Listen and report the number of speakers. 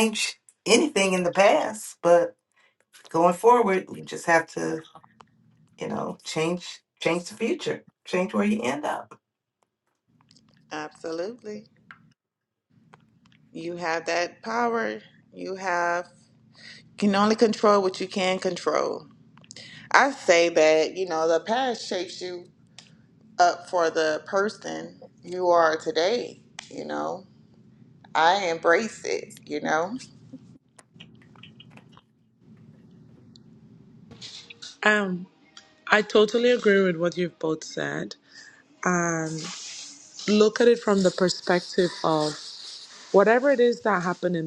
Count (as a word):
three